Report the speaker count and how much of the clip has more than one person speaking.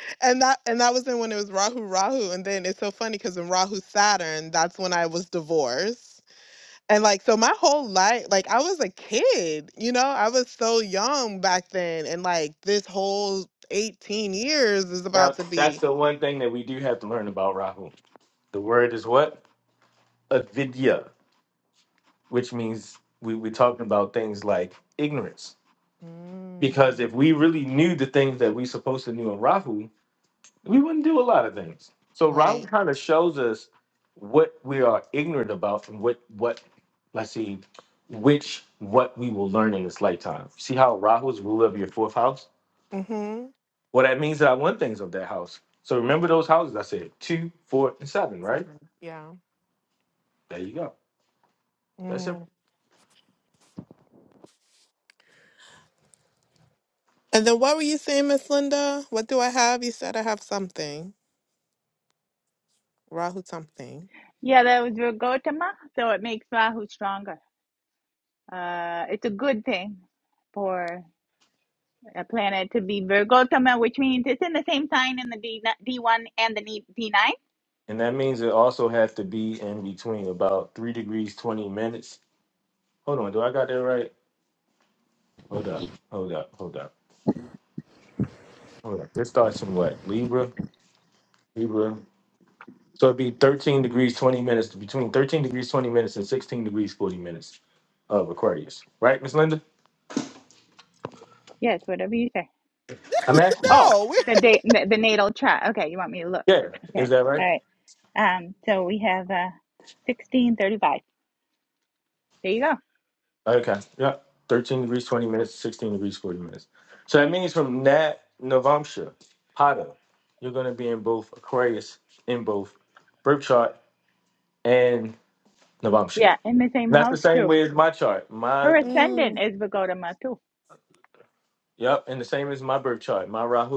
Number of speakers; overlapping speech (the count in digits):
3, about 3%